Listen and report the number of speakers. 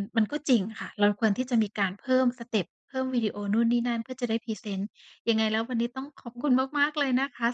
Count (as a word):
one